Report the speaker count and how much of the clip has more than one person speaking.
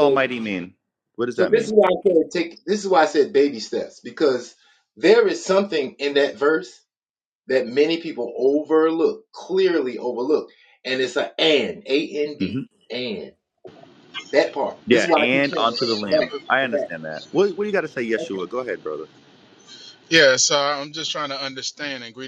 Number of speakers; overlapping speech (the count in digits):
3, about 11%